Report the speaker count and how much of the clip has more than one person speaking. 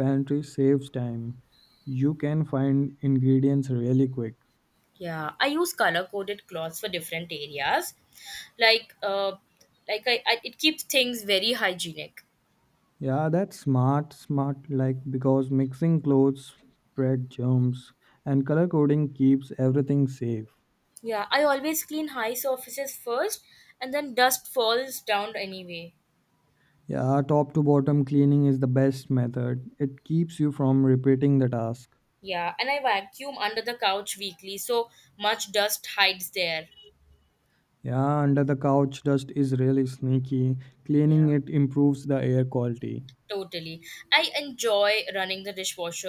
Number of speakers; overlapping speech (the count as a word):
two, about 1%